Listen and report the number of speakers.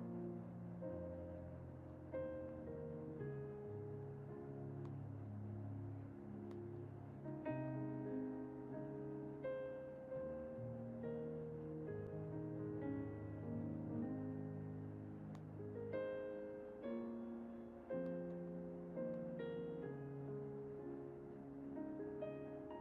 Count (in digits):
0